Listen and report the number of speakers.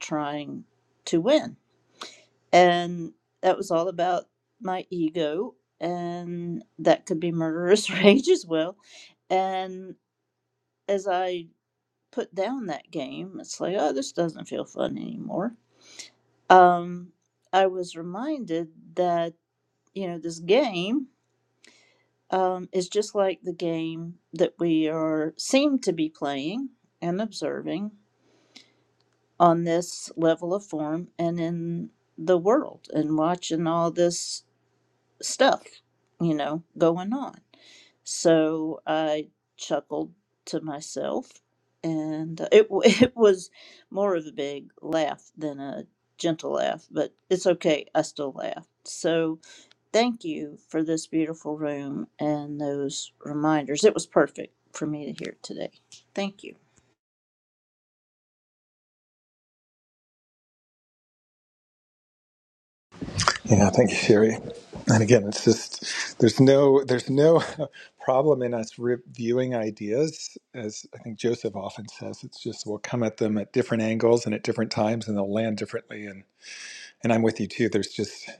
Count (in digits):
2